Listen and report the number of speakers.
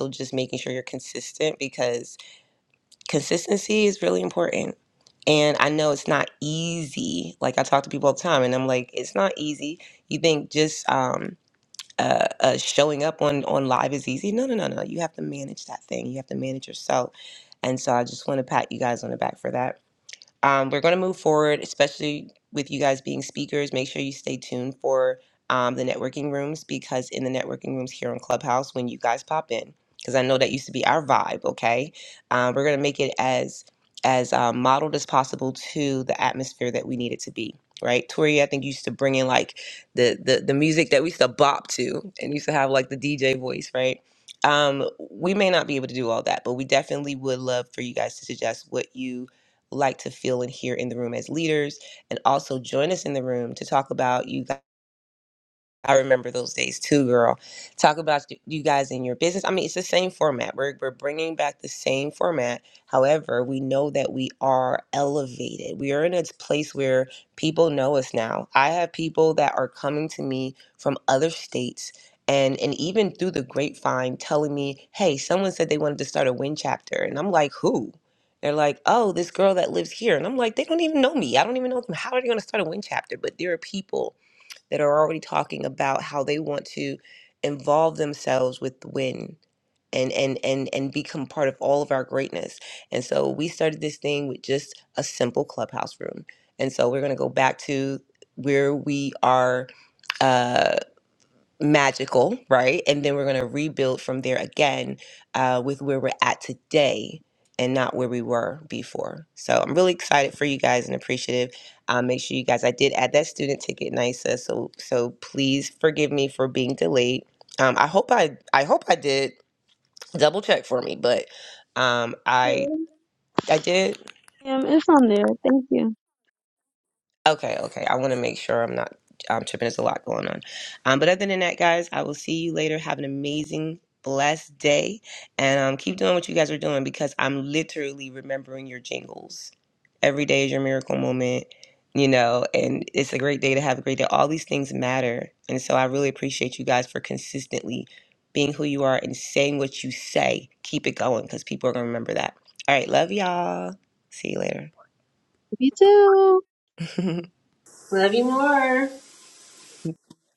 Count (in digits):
3